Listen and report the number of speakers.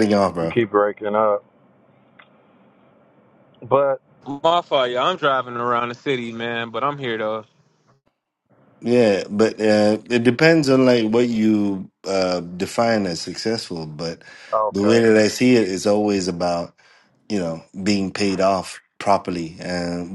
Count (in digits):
3